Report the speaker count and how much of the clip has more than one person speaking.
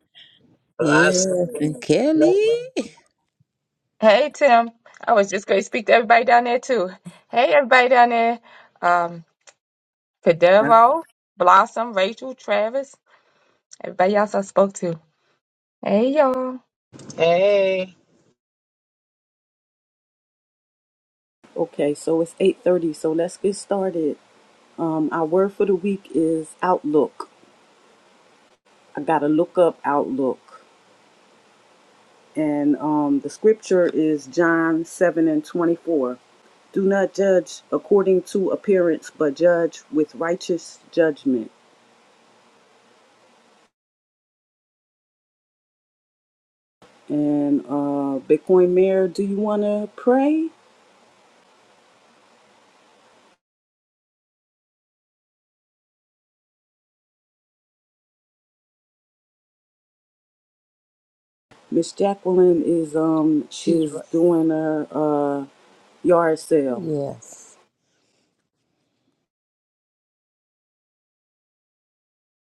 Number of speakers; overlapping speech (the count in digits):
4, about 2%